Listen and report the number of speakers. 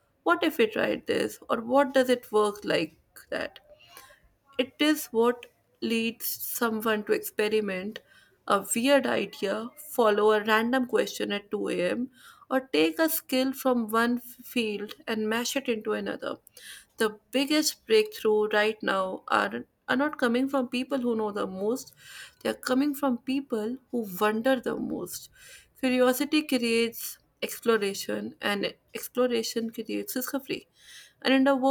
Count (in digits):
1